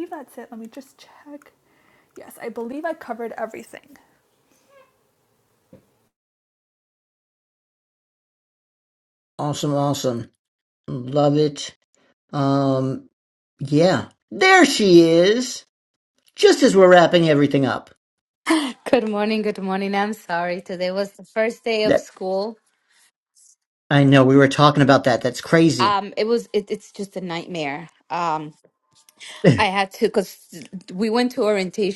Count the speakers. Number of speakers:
three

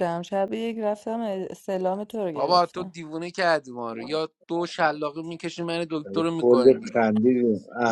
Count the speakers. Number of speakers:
three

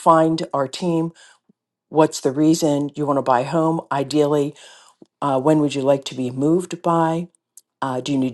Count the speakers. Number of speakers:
one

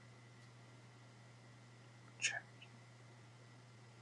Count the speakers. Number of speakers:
zero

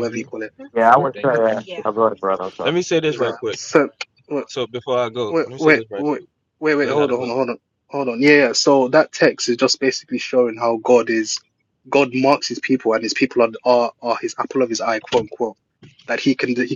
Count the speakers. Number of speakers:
three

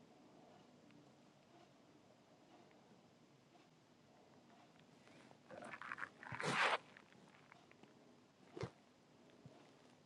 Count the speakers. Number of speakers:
zero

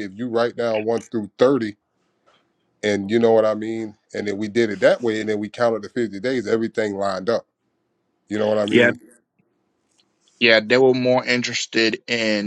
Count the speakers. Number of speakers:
two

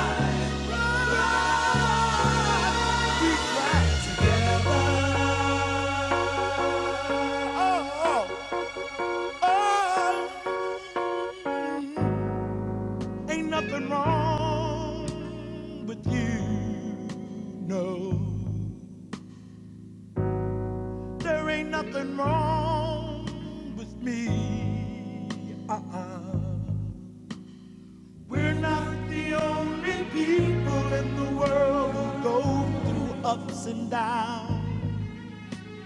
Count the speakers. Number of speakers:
one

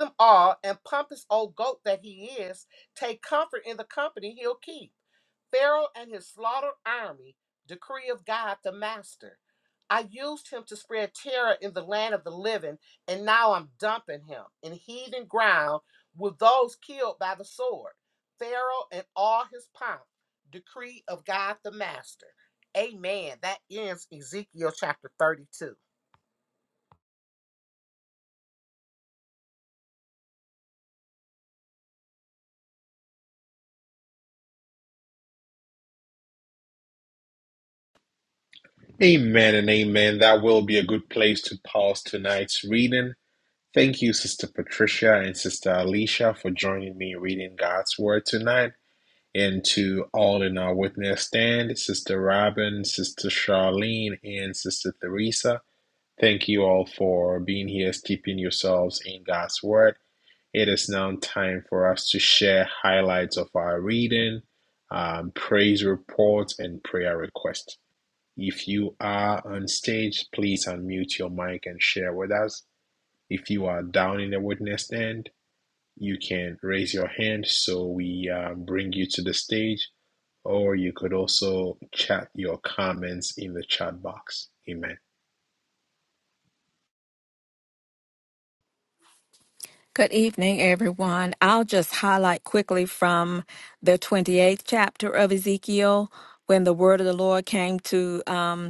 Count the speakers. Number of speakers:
three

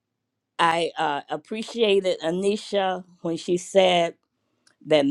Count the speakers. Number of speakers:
one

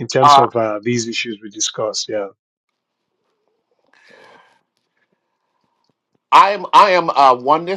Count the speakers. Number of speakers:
two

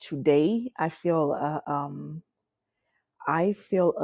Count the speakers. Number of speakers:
one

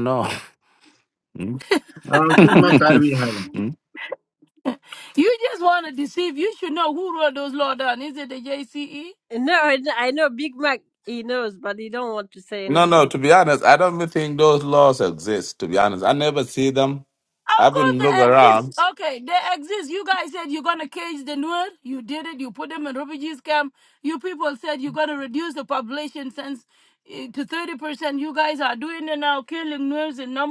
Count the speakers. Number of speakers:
four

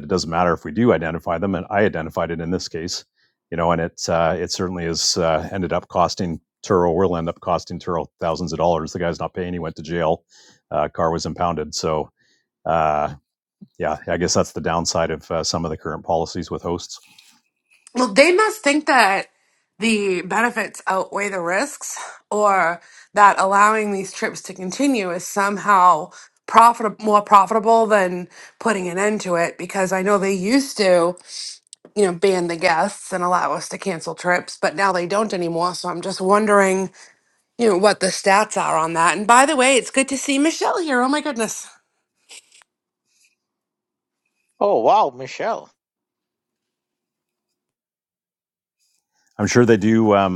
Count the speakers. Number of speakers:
three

